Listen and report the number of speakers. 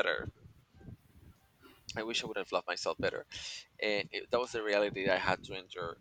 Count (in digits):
1